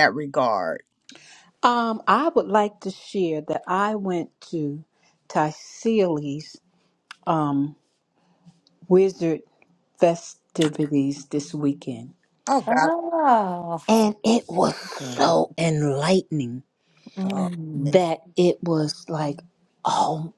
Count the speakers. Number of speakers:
three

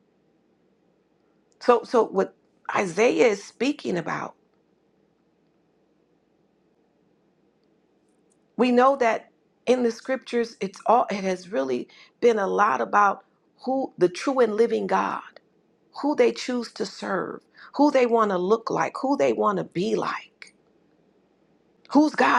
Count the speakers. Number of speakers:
one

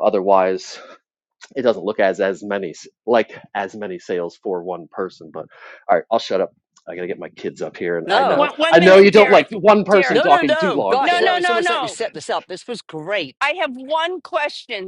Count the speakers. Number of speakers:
three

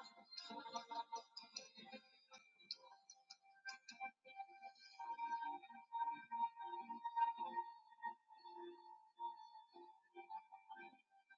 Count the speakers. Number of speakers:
zero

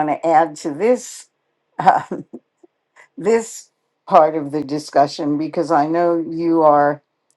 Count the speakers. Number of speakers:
one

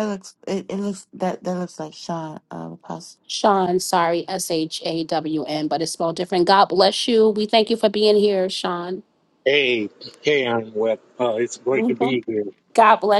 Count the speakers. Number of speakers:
three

